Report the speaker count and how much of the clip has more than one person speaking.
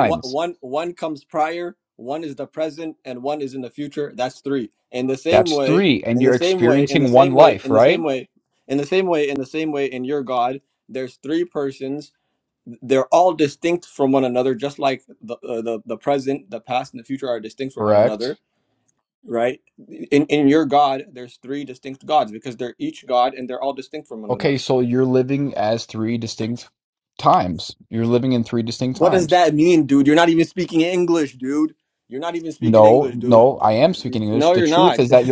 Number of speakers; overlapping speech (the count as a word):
two, about 15%